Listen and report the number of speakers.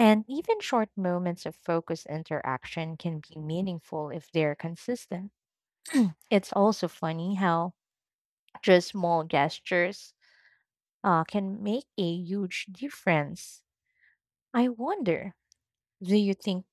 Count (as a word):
one